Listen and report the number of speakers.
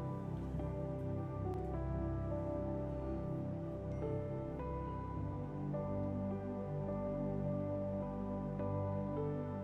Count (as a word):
zero